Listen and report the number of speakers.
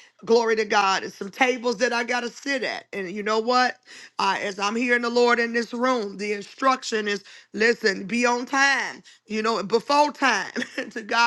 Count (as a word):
one